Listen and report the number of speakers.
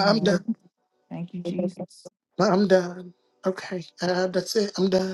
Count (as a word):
two